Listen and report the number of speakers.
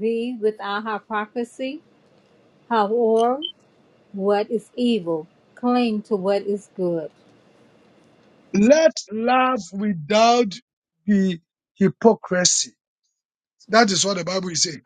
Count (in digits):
2